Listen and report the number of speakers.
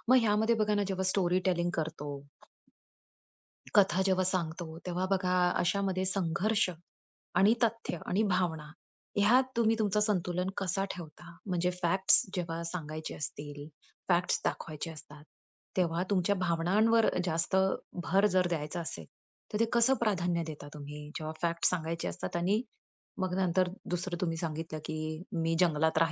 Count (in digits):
1